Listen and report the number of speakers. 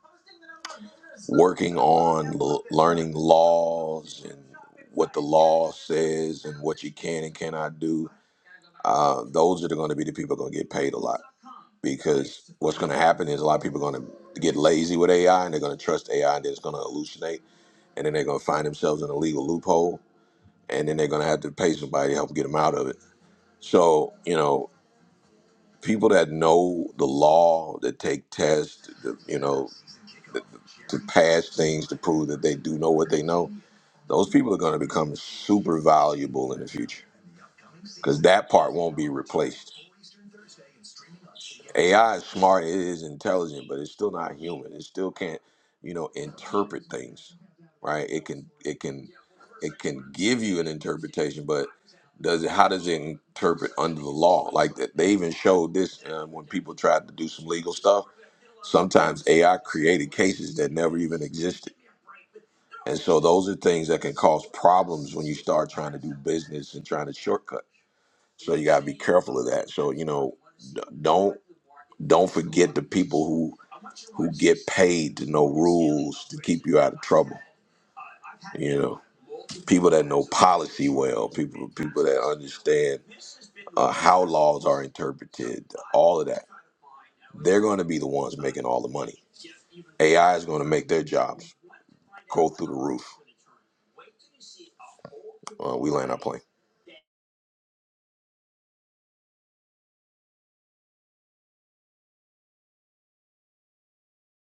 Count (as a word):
one